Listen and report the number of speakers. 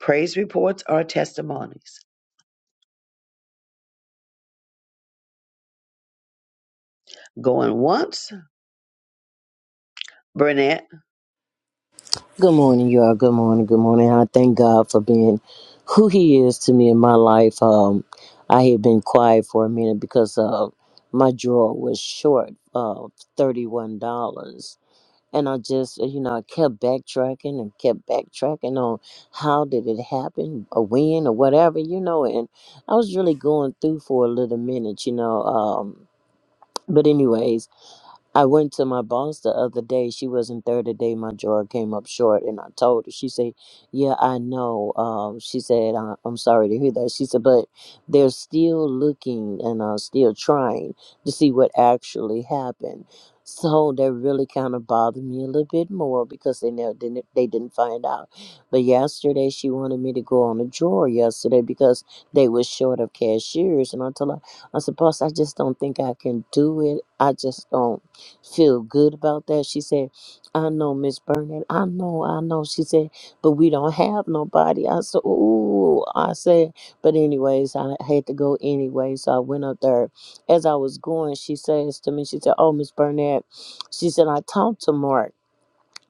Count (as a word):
two